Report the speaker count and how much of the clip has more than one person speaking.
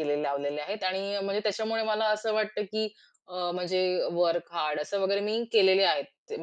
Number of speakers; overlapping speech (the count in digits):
1, no overlap